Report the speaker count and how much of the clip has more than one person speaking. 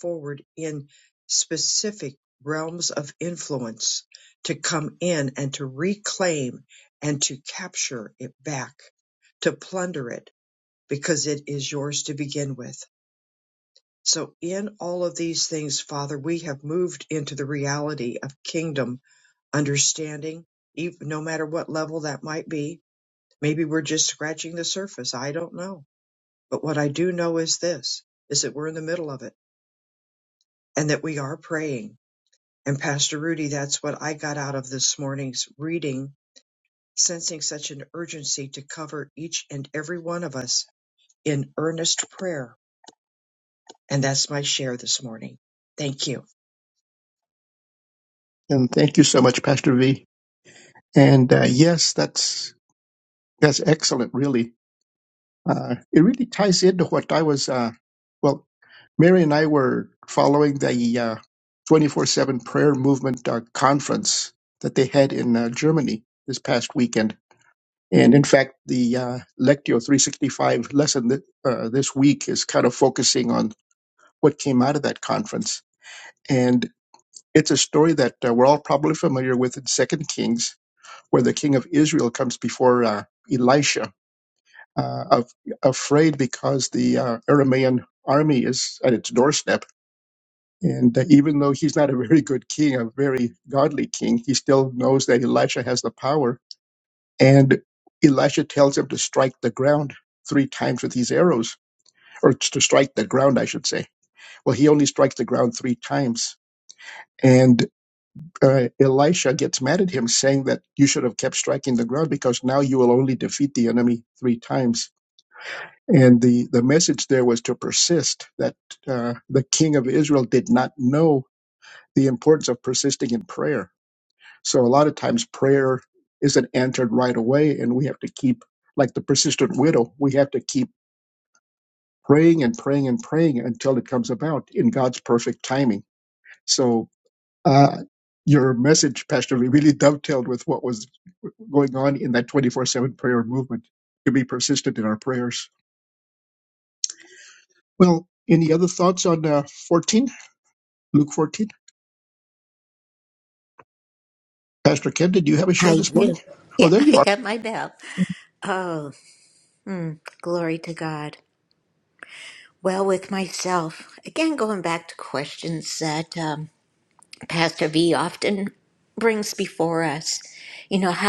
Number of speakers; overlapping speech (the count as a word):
three, about 1%